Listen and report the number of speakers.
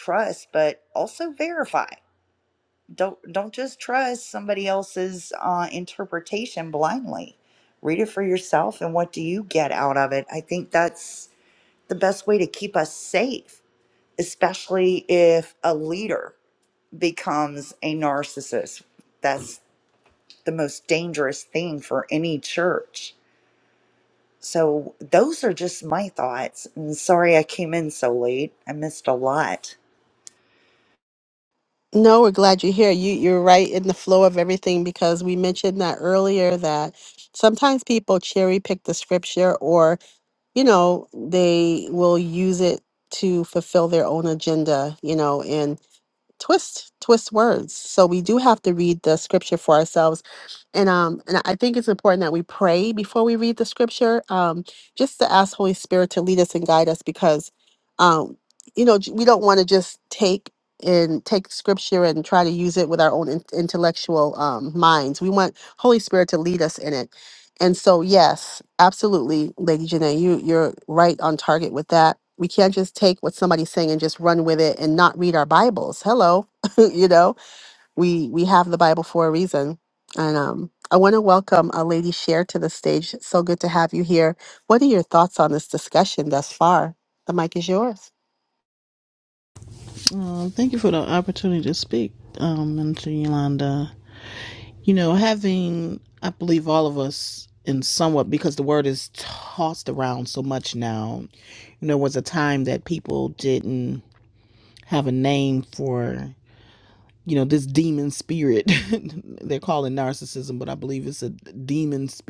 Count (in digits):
3